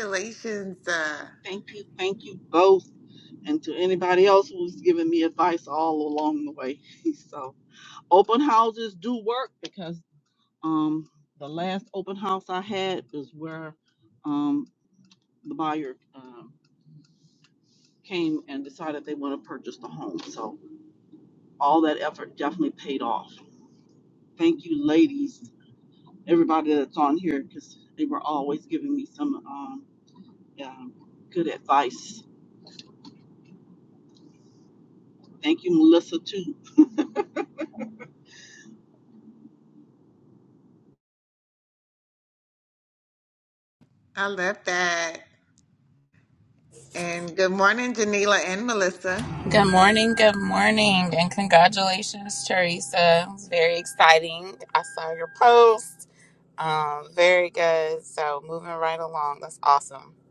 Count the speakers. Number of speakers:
3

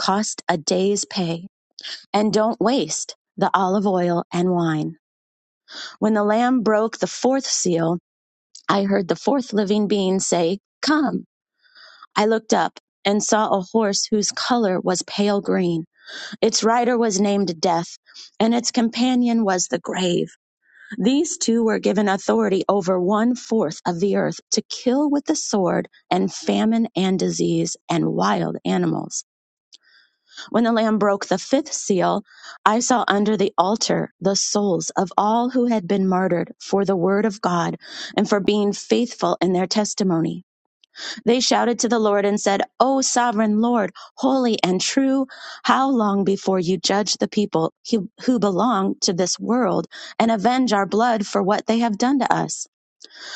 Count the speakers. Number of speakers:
1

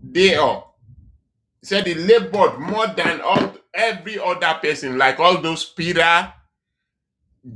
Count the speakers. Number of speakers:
1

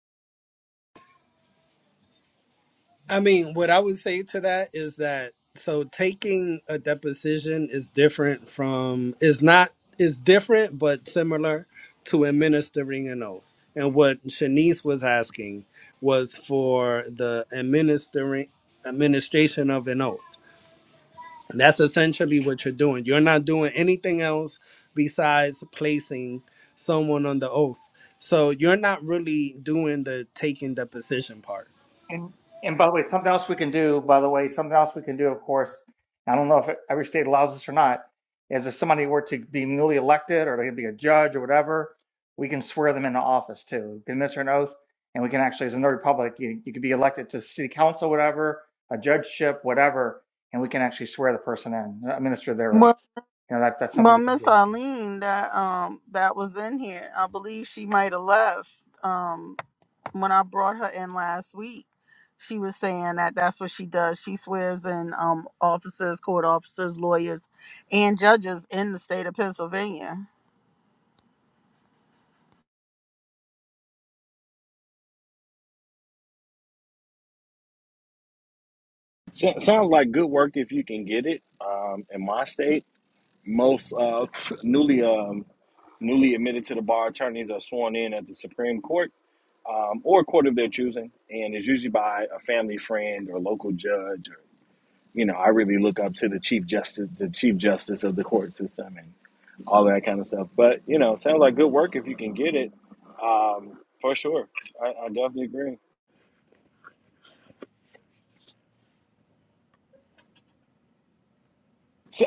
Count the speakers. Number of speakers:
4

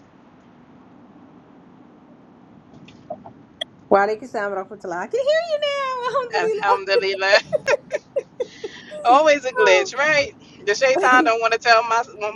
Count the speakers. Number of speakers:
2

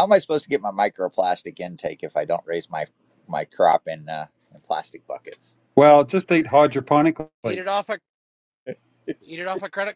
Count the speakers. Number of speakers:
3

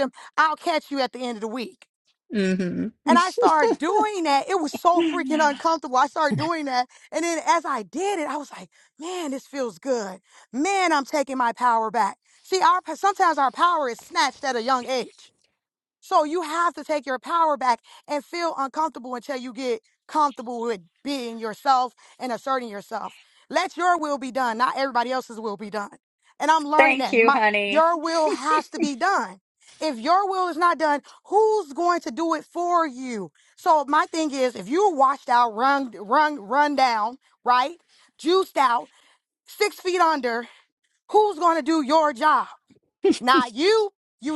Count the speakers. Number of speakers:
2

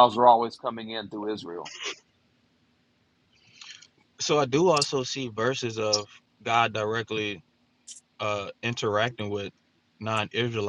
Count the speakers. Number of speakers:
2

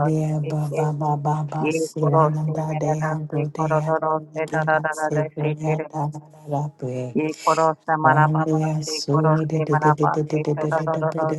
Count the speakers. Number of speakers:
2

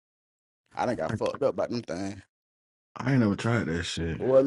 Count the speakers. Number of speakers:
2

